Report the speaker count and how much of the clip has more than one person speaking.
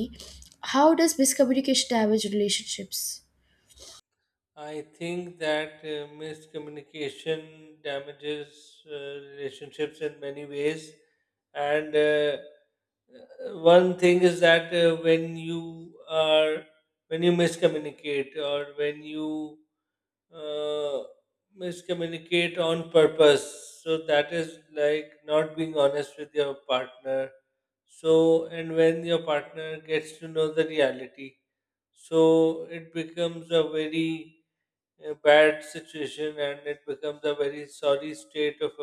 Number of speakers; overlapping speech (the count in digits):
2, no overlap